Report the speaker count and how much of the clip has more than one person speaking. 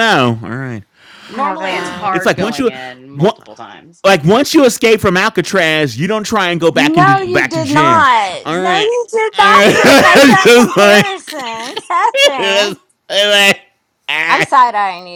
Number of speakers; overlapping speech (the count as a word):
three, about 39%